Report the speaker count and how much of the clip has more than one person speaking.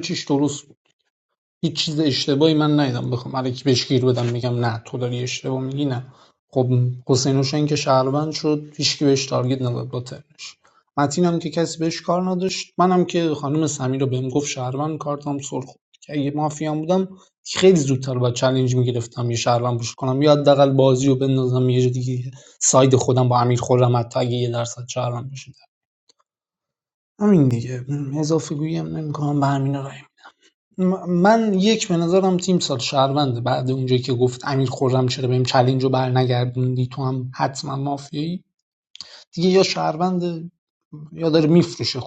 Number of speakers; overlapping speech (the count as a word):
one, no overlap